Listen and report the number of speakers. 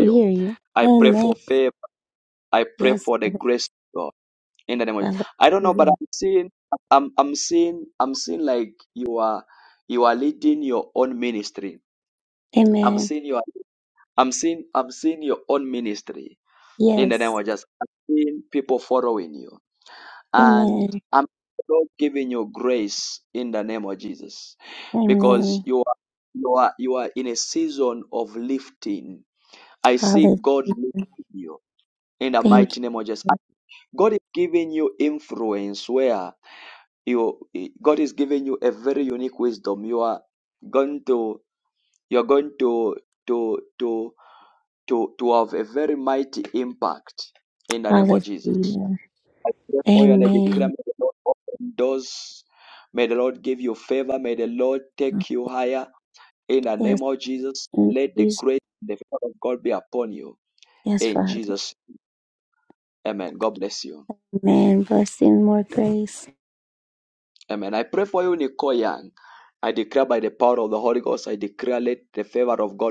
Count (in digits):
2